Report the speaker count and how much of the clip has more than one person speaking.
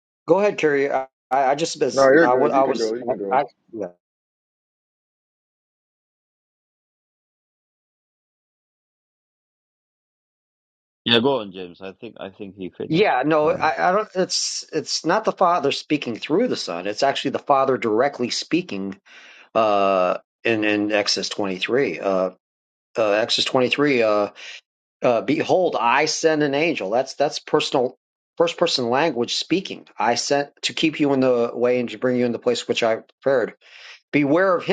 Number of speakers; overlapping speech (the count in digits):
3, about 4%